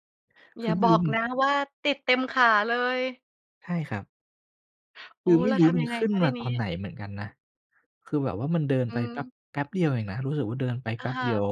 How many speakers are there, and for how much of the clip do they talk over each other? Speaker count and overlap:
two, about 22%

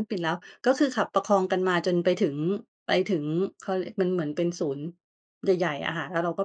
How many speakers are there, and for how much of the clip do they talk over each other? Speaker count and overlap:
one, no overlap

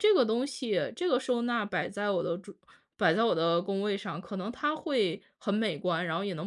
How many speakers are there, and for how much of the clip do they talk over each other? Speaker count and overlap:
one, no overlap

